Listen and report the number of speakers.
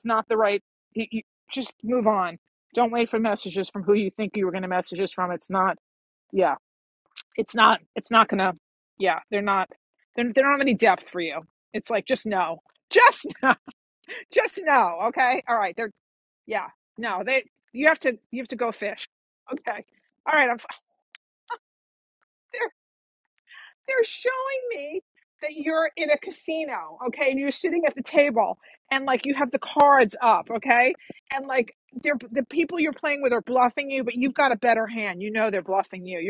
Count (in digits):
1